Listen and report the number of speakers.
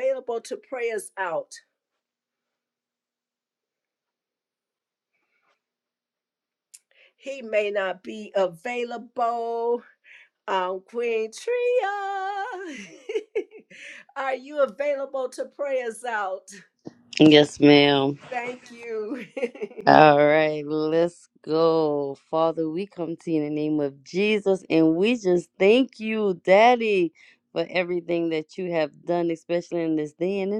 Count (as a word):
two